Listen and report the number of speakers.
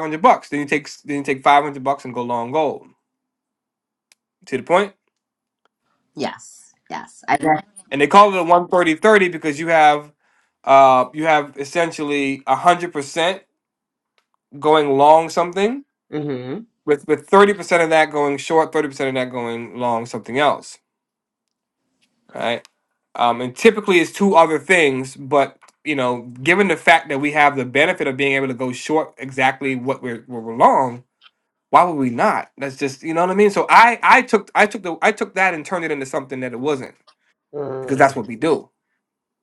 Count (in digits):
2